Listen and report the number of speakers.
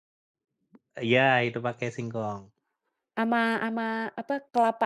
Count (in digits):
2